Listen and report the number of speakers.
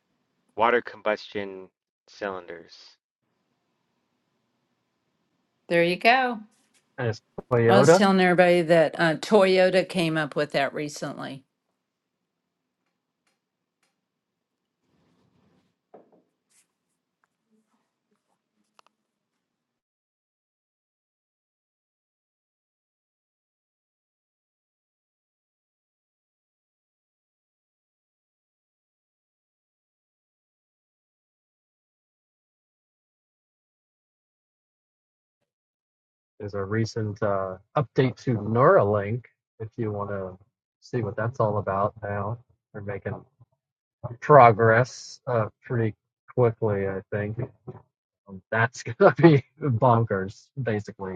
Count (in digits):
3